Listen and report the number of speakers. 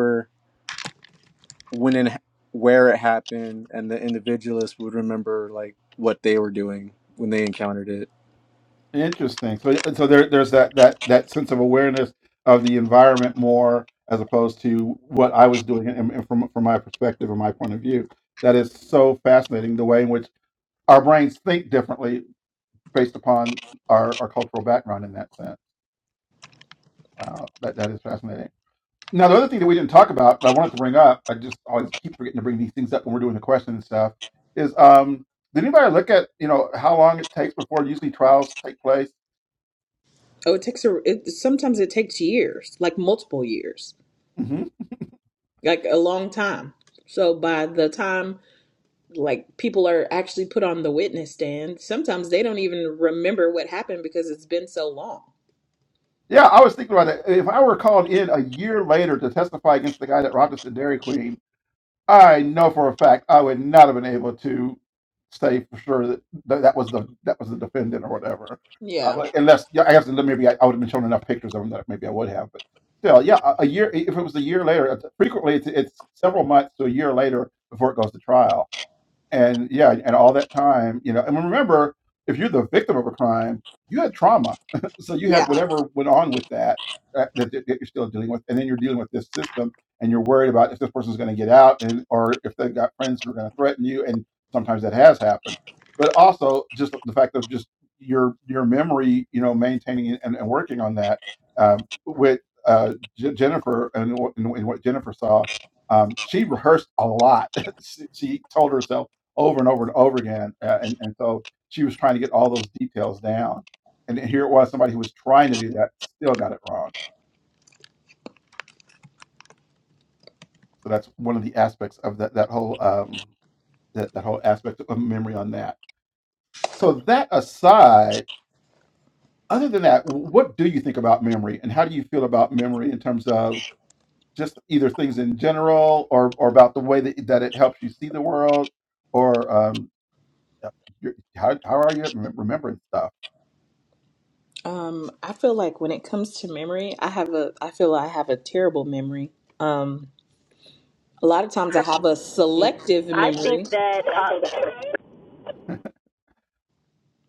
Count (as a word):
four